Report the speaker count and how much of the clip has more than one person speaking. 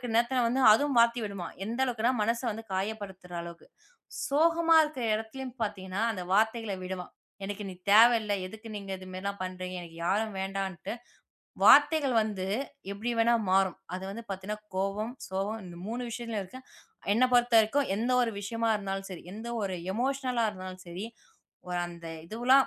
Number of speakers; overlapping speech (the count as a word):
one, no overlap